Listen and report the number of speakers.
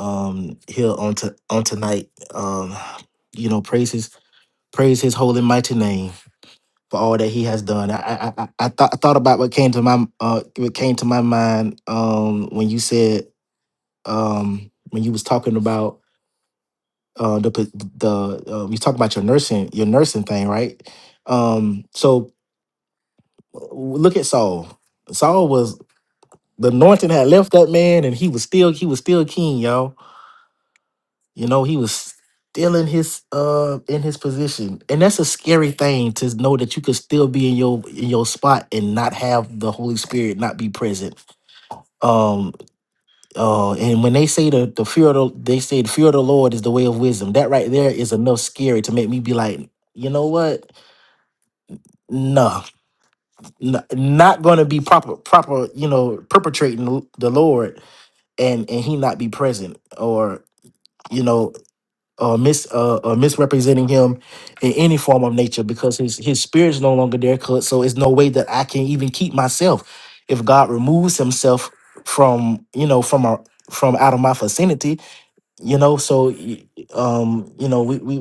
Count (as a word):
one